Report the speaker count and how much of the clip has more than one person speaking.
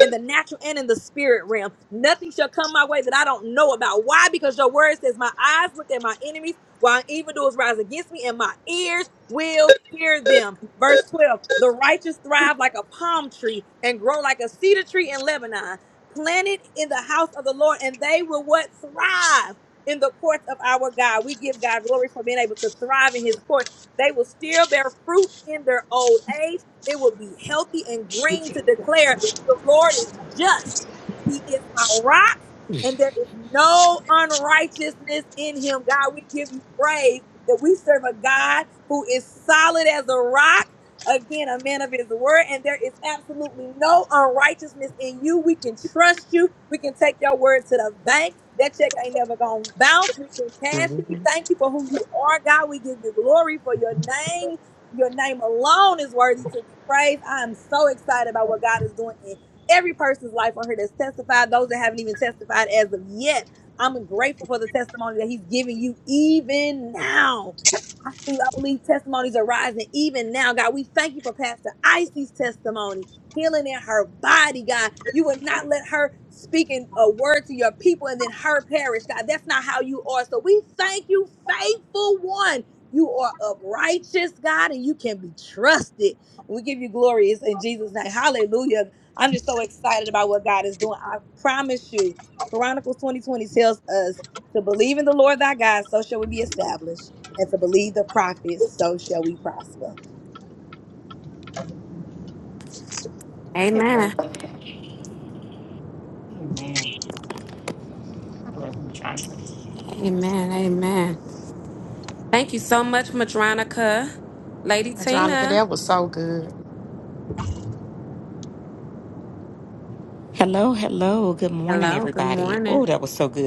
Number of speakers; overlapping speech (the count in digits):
5, about 2%